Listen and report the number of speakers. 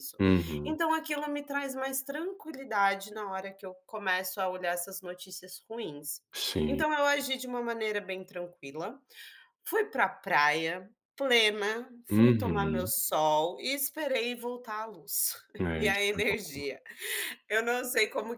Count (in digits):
2